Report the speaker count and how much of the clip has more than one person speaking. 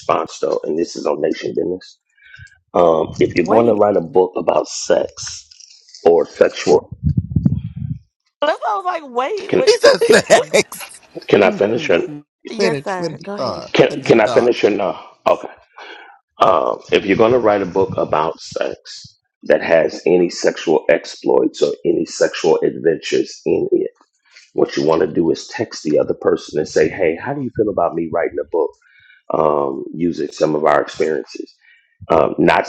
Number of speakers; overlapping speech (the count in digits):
3, about 9%